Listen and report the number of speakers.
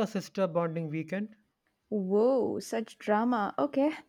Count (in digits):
2